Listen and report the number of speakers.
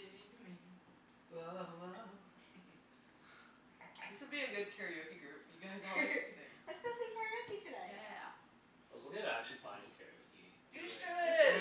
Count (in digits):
4